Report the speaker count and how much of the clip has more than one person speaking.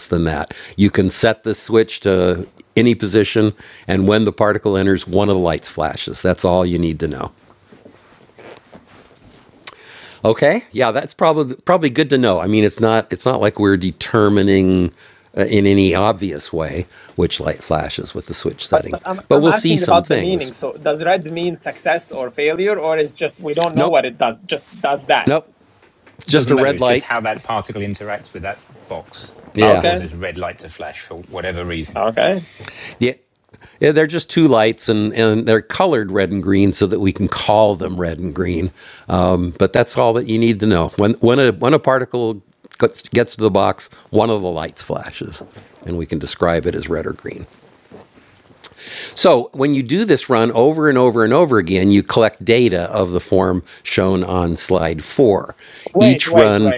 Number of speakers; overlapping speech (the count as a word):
three, about 6%